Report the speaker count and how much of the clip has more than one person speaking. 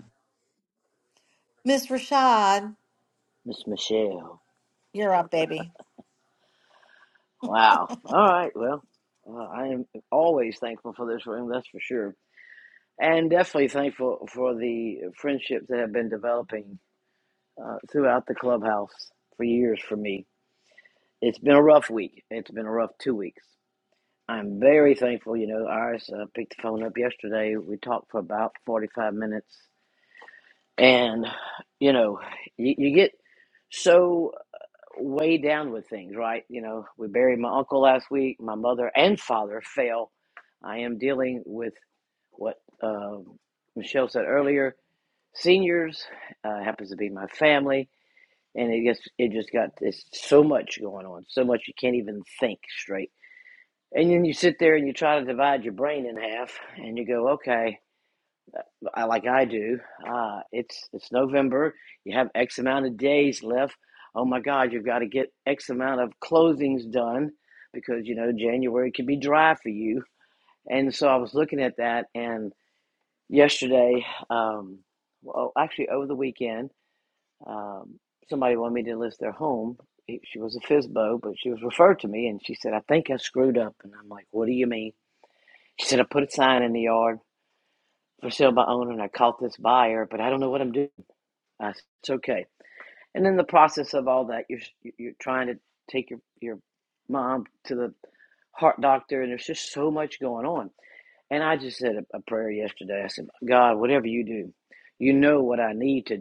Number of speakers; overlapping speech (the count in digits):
2, no overlap